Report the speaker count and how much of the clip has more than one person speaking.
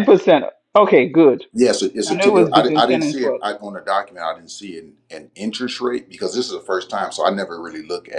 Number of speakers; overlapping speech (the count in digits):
2, about 16%